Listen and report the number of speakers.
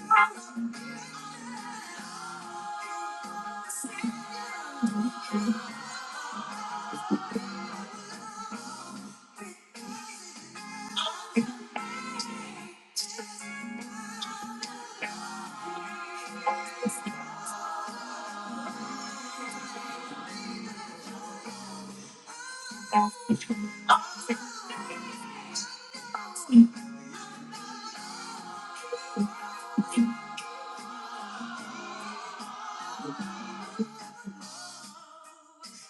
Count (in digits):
0